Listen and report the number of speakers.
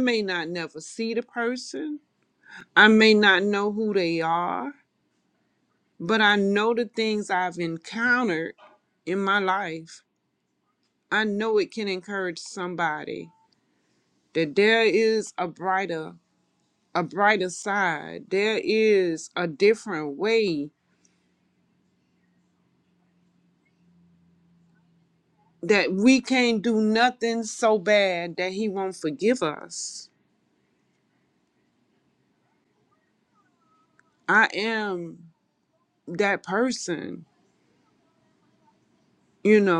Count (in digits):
1